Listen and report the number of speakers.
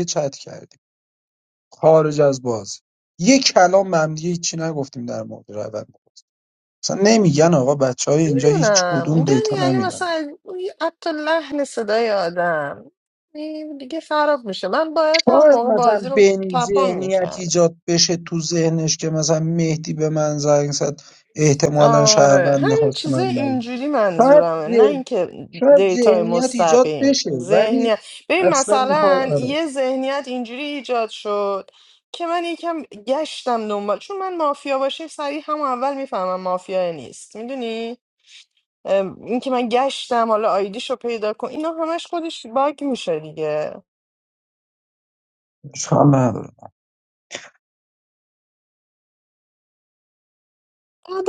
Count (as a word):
two